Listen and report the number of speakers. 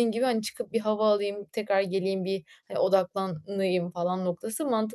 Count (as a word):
one